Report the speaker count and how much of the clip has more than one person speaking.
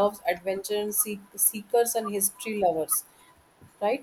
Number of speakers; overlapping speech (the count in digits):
1, no overlap